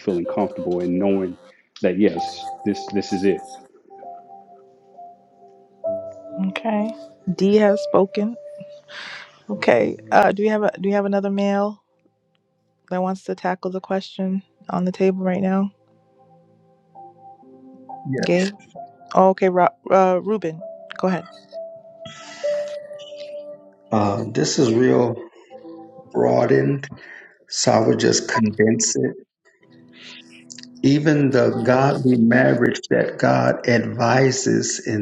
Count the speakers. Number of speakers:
3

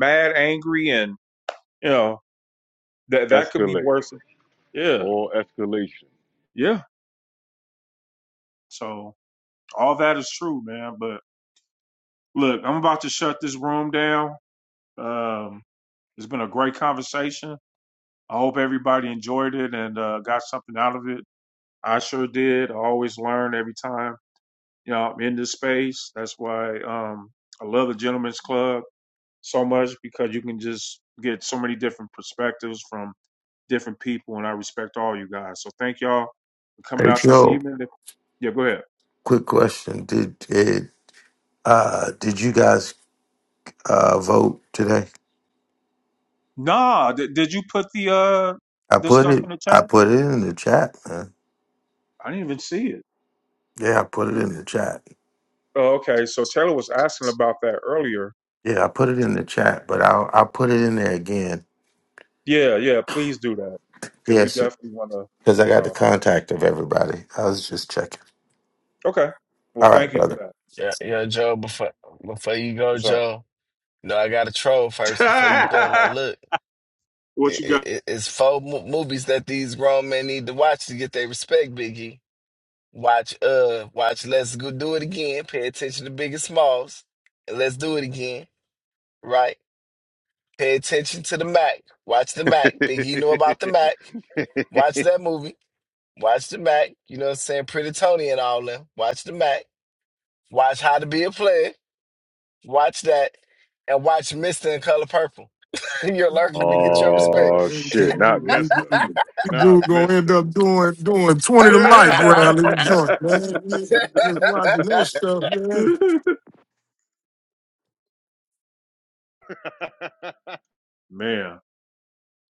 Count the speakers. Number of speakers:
5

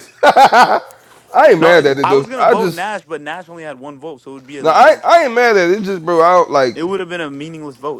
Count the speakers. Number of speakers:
2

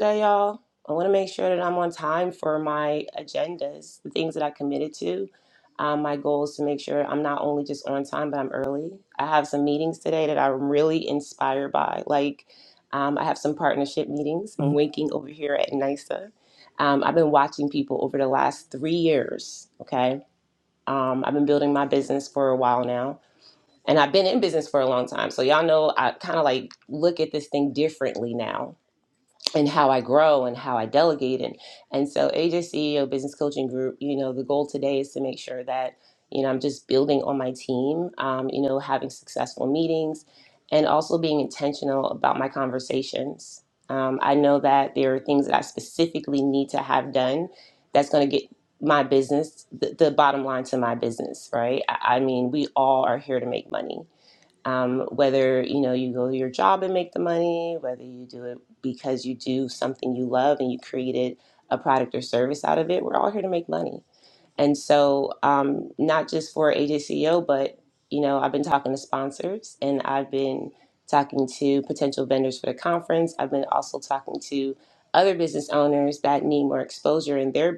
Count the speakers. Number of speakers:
1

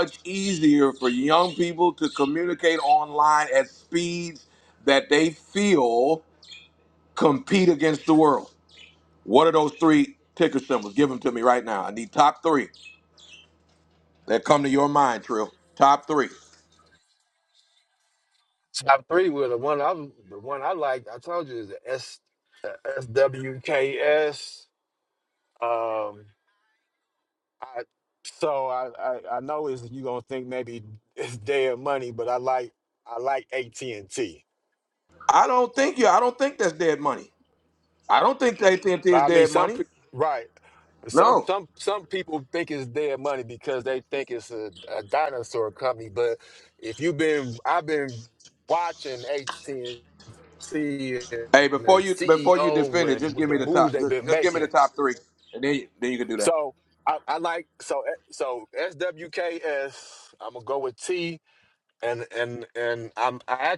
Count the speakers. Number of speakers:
2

